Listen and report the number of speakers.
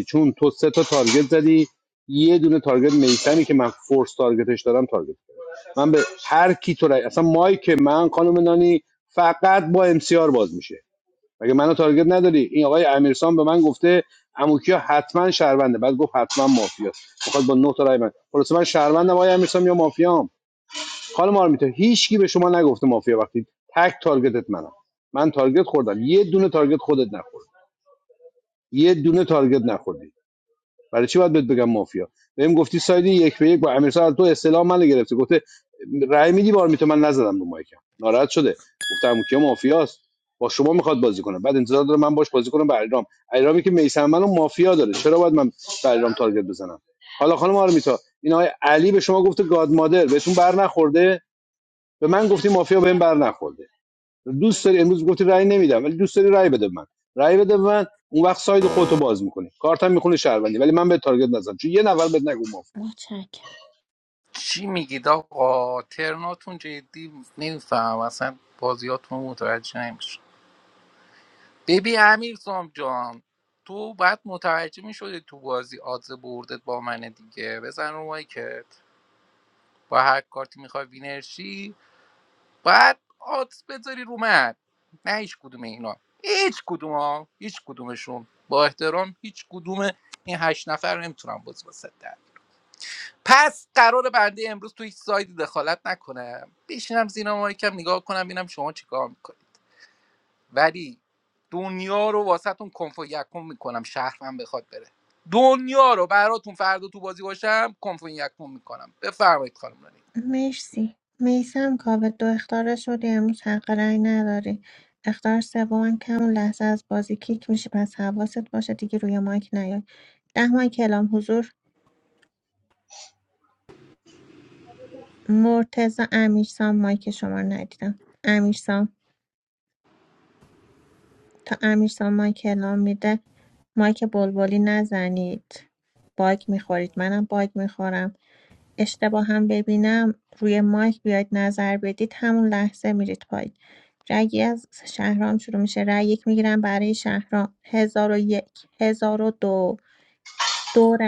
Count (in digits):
3